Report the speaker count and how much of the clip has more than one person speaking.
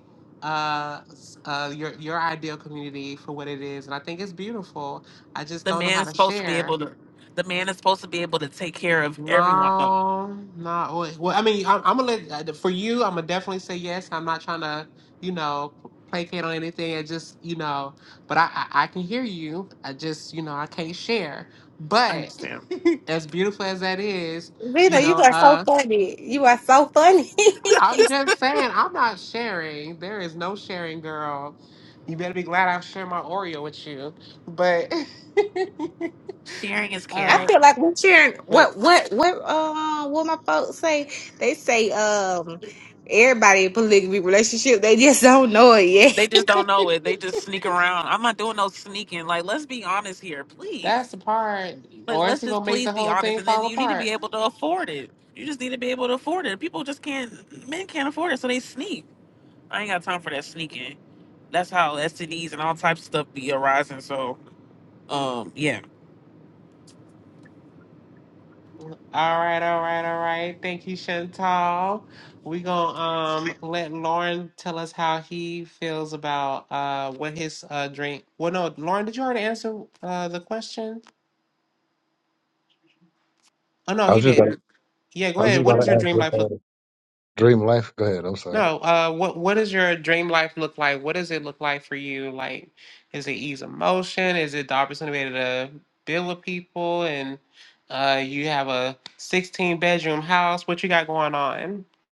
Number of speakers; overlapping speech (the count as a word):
four, about 7%